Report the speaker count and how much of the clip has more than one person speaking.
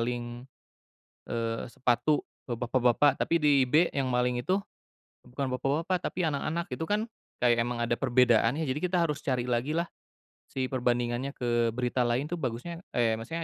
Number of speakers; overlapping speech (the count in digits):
1, no overlap